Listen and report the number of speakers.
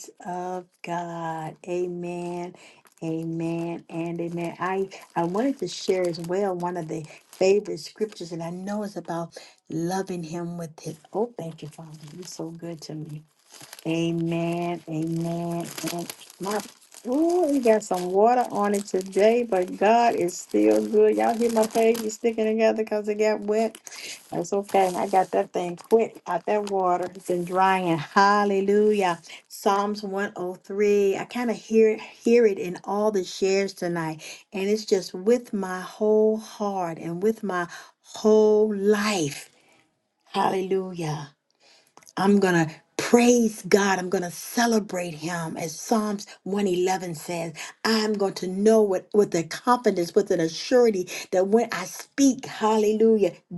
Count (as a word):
one